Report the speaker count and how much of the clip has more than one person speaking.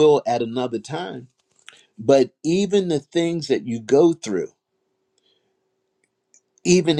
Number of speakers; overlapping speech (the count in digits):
1, no overlap